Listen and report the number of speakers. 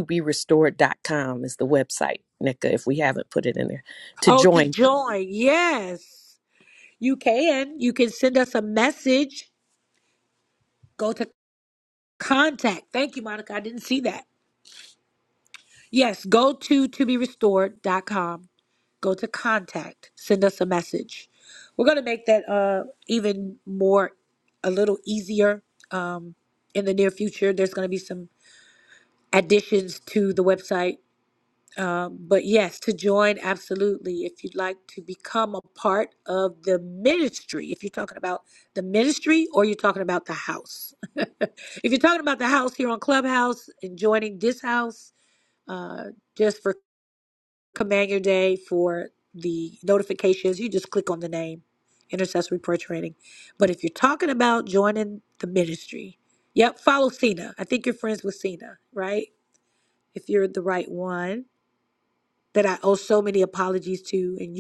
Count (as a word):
two